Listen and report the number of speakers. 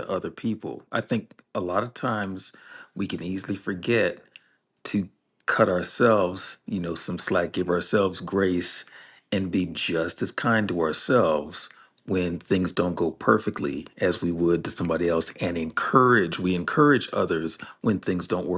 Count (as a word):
one